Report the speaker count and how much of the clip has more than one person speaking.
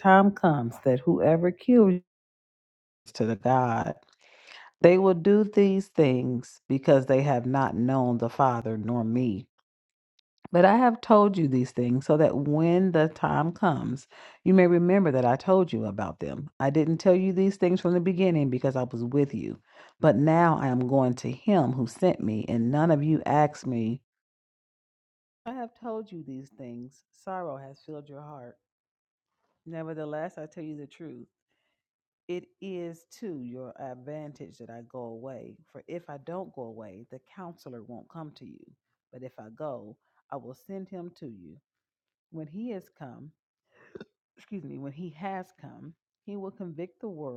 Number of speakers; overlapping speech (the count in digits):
1, no overlap